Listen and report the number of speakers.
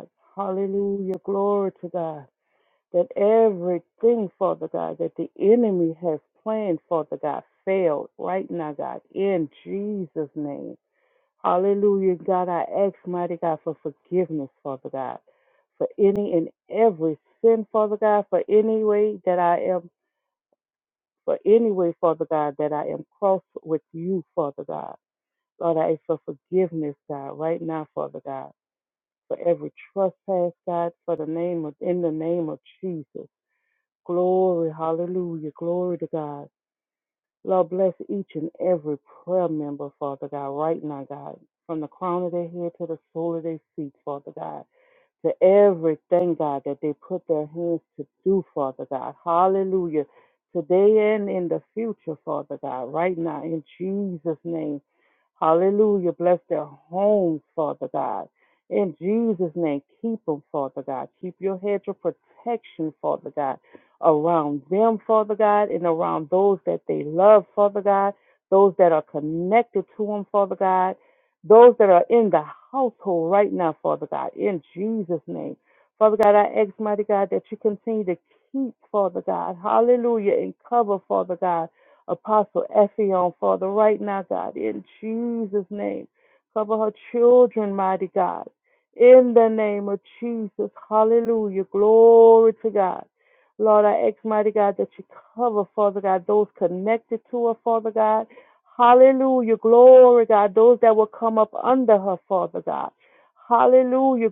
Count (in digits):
1